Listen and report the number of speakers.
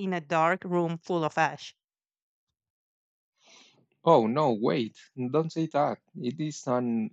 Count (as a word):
two